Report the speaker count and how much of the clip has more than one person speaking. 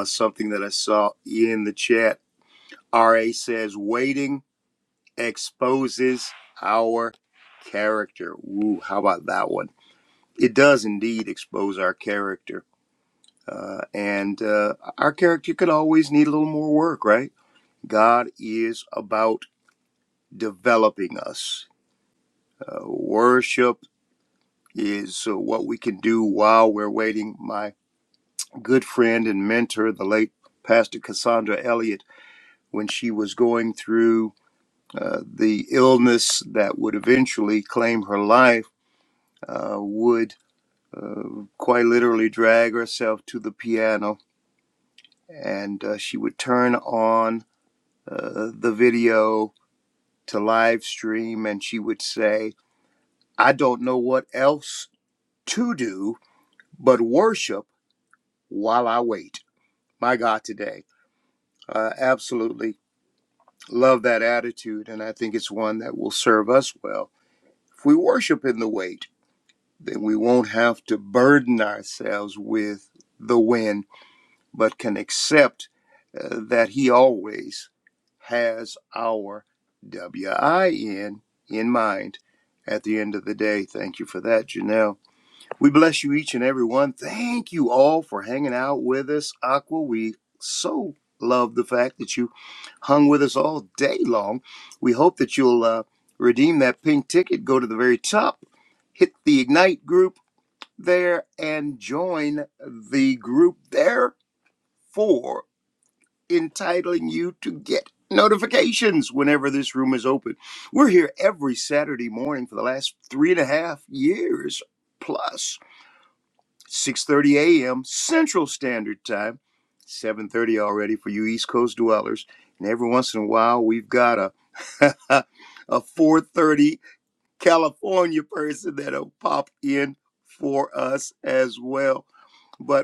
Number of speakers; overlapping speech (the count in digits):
1, no overlap